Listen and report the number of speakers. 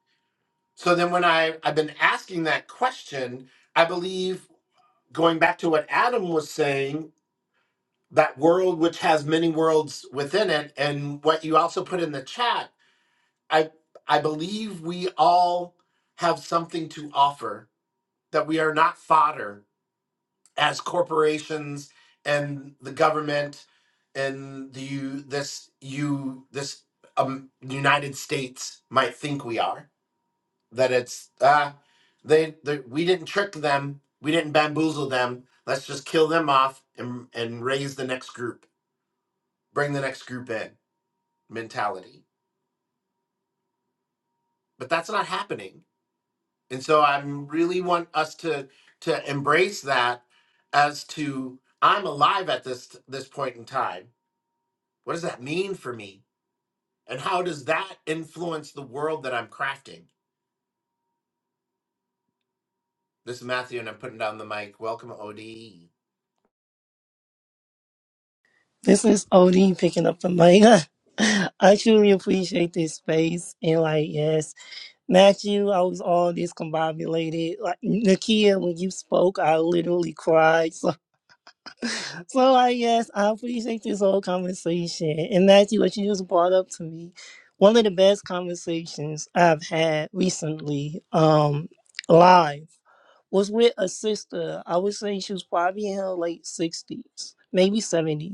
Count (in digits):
2